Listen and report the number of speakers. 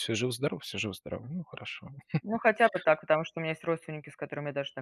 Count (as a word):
two